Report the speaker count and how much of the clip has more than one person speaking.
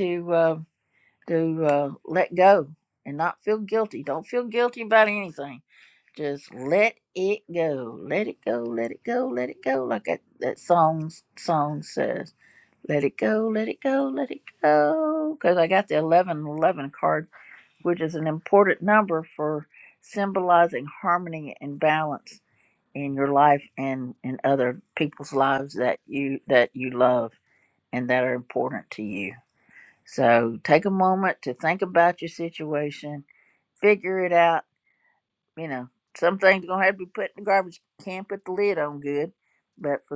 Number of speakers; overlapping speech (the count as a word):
one, no overlap